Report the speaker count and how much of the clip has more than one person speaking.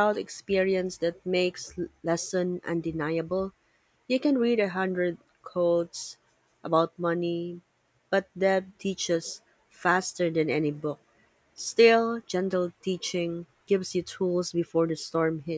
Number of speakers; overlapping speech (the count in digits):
1, no overlap